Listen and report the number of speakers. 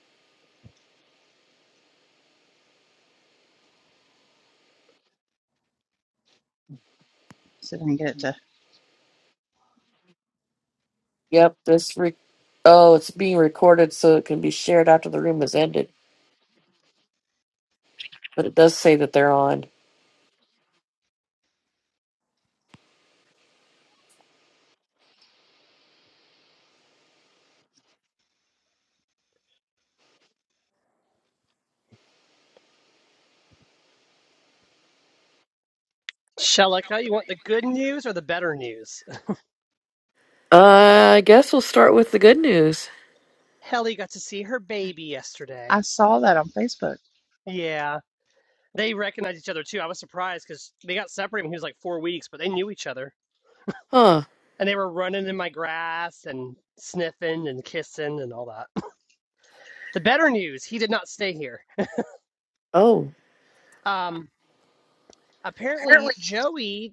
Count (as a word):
three